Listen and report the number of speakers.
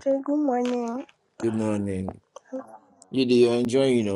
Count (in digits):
2